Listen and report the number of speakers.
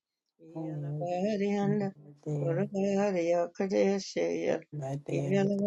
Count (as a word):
two